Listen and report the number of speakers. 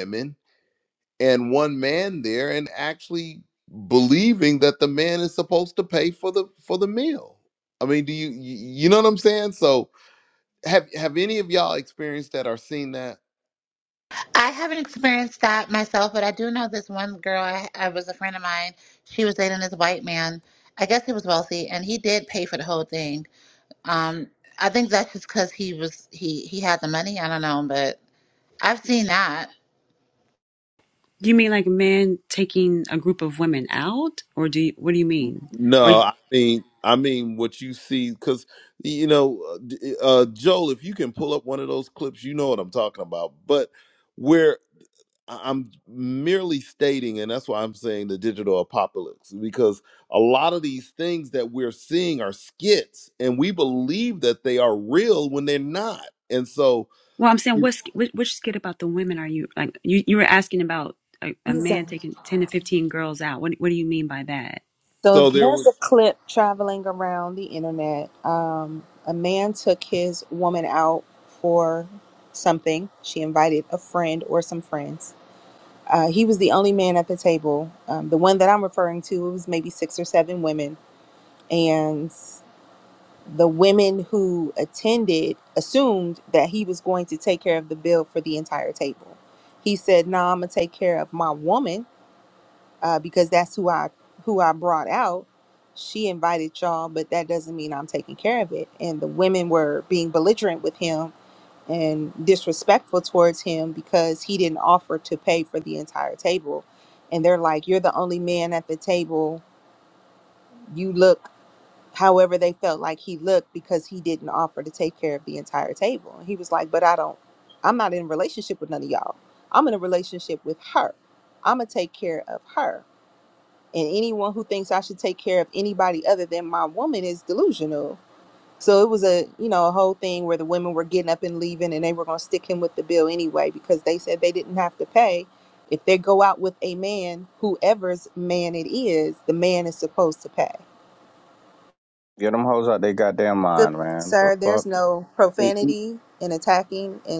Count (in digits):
5